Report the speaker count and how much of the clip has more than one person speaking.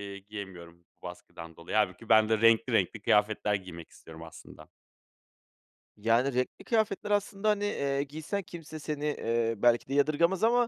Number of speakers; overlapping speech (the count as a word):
two, no overlap